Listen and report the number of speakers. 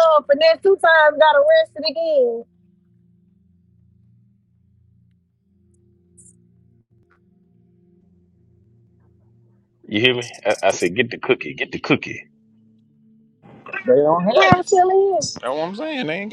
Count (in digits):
3